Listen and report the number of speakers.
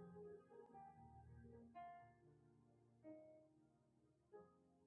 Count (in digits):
0